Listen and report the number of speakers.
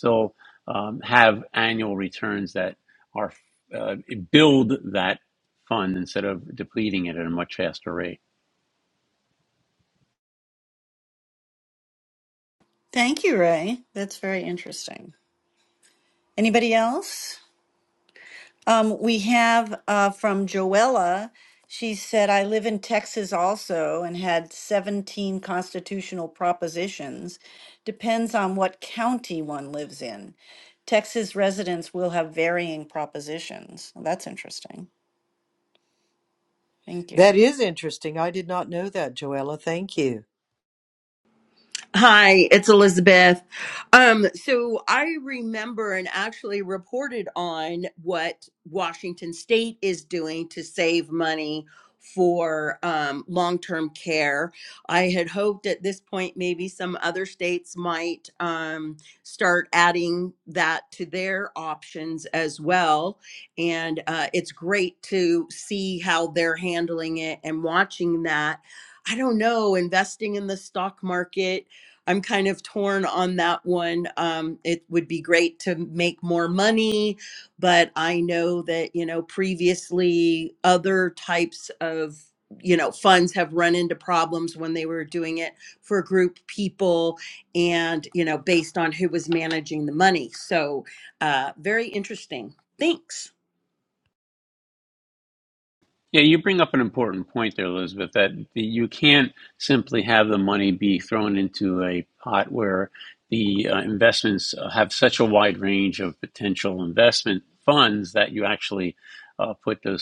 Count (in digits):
4